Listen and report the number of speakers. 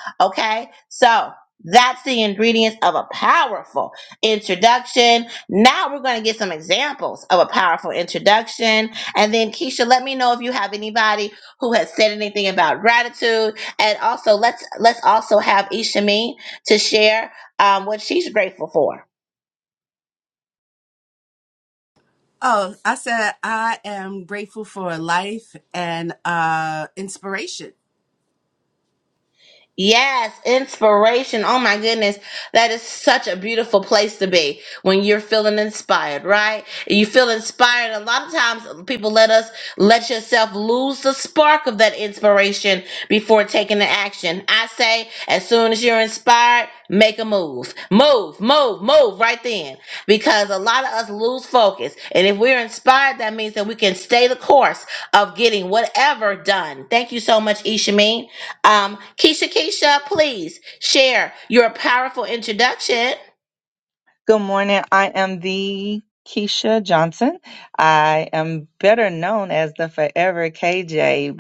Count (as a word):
three